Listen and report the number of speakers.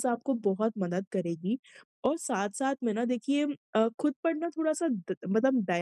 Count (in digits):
1